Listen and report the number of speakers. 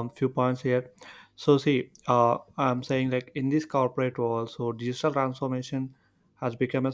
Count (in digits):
1